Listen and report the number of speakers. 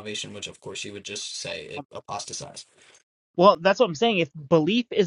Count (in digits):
2